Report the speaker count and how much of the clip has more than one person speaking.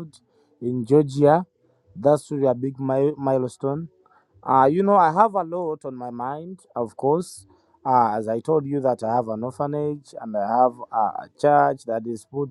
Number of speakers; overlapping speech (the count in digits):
1, no overlap